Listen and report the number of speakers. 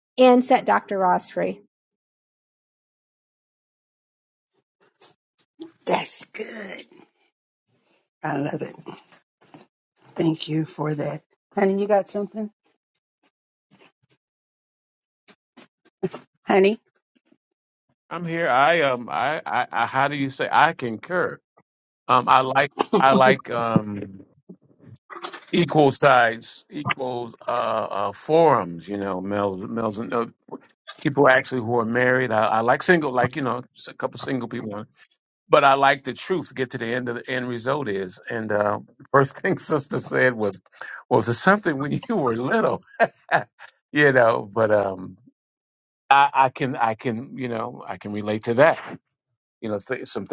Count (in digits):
3